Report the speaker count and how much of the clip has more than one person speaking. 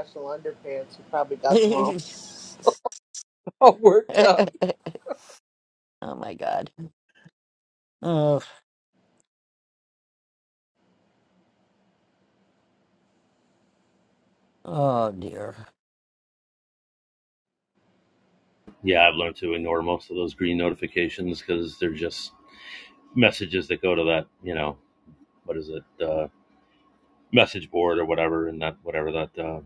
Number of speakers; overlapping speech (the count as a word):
three, about 1%